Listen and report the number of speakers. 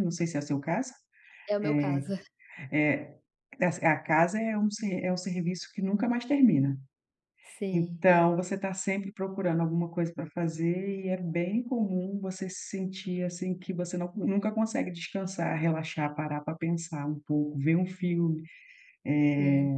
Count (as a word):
two